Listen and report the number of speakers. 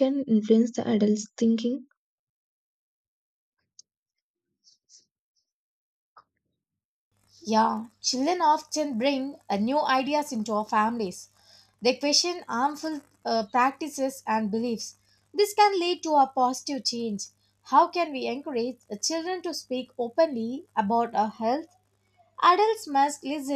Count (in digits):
2